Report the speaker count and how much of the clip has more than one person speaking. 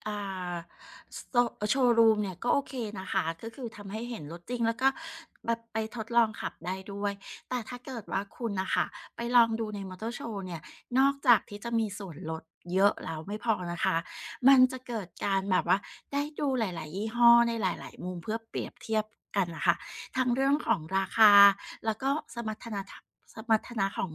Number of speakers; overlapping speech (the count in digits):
1, no overlap